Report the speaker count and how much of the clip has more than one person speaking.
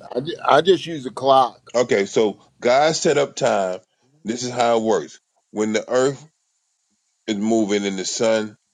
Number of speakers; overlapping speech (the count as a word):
two, no overlap